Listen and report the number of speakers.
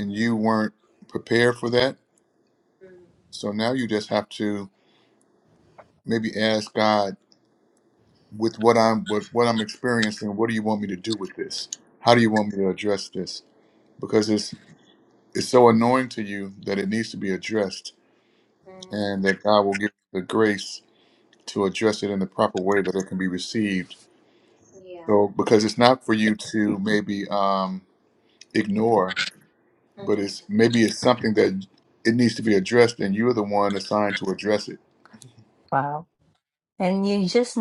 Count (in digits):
3